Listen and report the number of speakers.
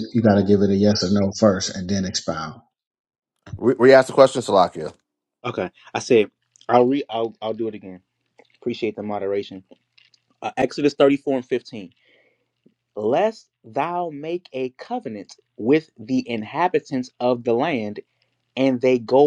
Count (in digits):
3